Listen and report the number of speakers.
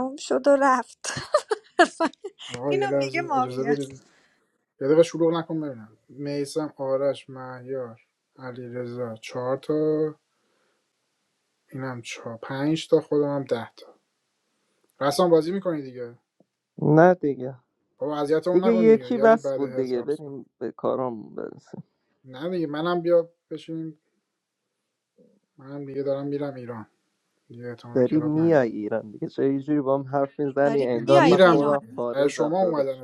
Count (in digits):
3